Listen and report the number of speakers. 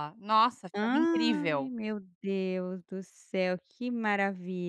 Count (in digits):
2